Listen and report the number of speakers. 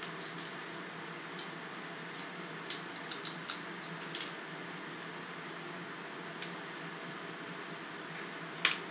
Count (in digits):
0